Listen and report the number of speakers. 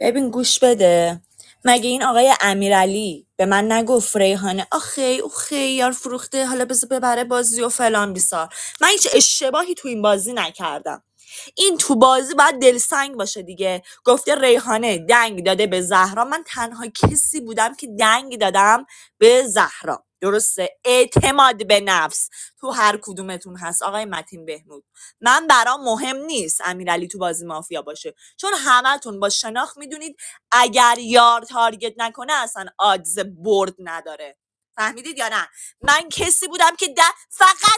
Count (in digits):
1